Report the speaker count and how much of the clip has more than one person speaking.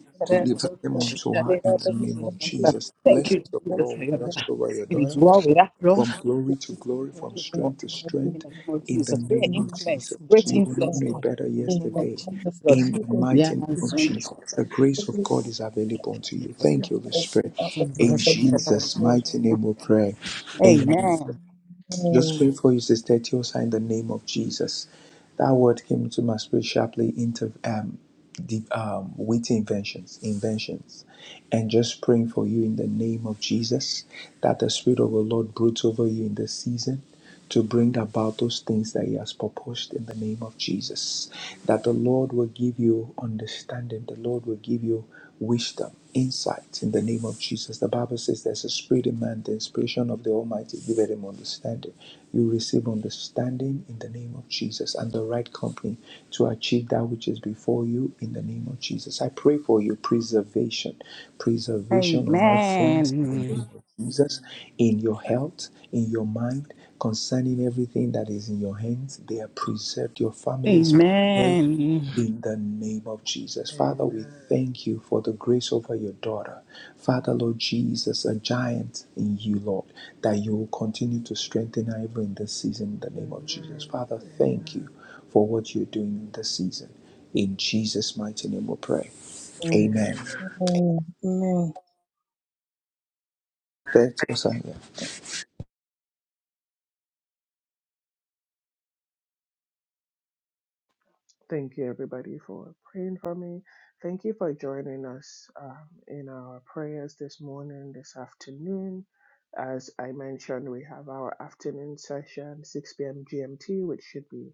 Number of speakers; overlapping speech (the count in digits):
4, about 11%